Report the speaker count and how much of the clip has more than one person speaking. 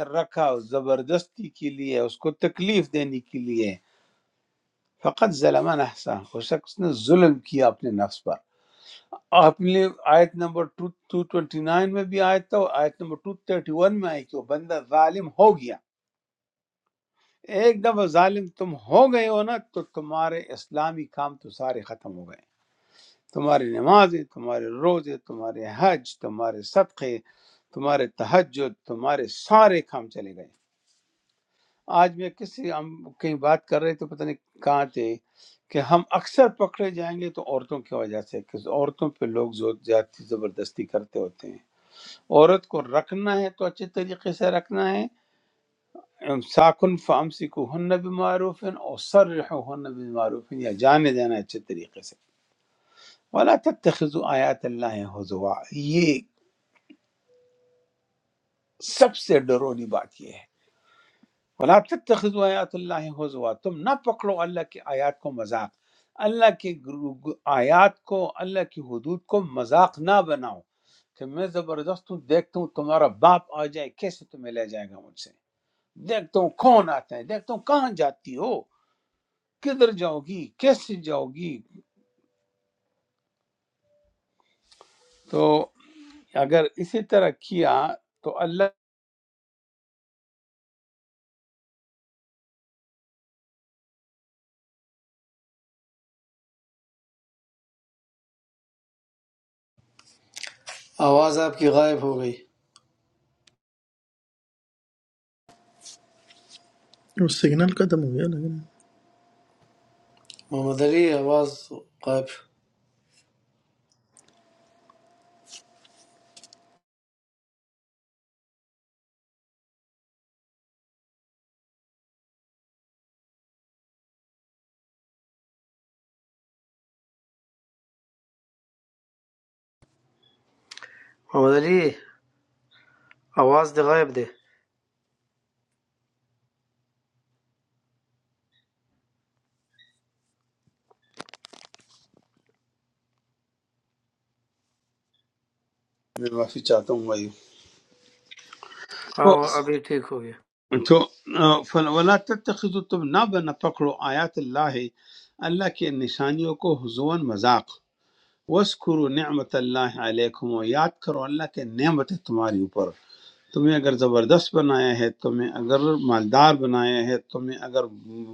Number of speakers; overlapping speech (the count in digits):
3, under 1%